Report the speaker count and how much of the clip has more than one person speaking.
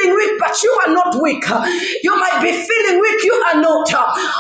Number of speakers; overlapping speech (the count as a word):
one, no overlap